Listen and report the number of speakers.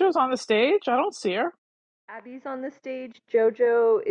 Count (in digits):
2